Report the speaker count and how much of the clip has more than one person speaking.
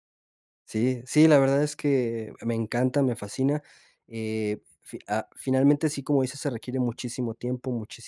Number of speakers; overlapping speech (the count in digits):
1, no overlap